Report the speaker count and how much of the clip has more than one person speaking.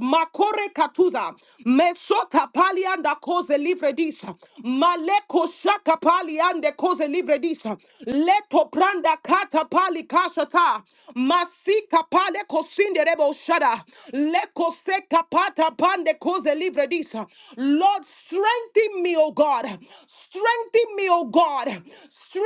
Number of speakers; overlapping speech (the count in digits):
1, no overlap